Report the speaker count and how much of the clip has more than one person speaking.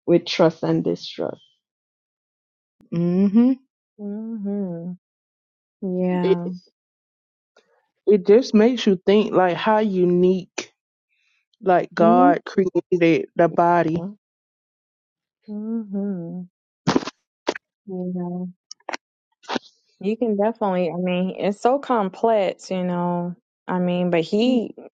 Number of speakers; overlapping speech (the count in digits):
3, about 2%